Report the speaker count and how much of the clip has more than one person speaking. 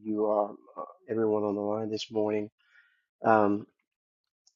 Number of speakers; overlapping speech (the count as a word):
one, no overlap